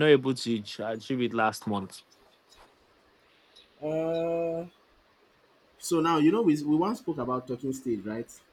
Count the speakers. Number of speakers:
2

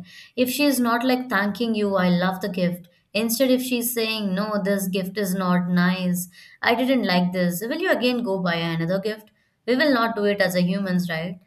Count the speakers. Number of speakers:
1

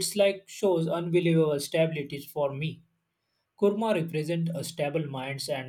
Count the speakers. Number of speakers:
1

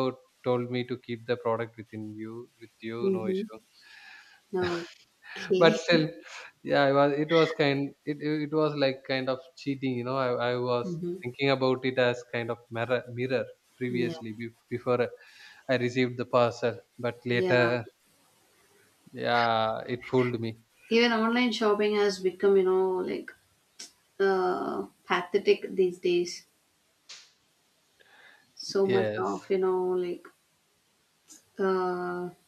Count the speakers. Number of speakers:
2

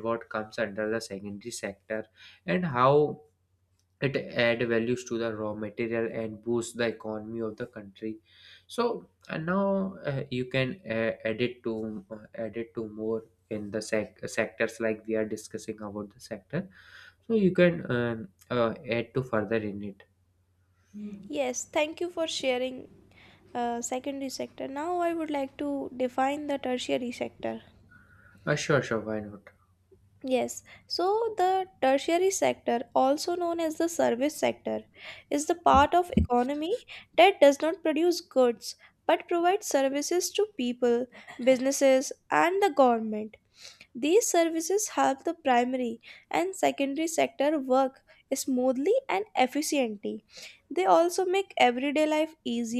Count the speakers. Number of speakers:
2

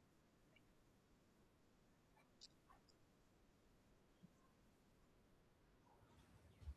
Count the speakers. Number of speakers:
0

